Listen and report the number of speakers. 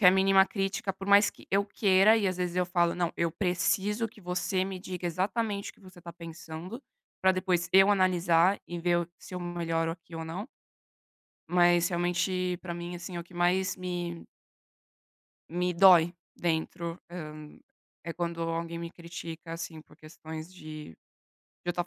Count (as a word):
one